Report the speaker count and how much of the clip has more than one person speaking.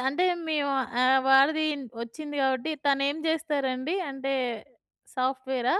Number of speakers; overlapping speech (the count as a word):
one, no overlap